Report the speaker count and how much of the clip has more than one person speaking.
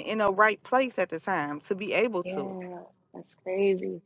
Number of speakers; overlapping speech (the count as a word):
two, about 7%